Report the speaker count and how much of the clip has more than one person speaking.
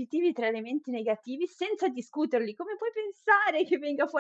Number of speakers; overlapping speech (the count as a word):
one, no overlap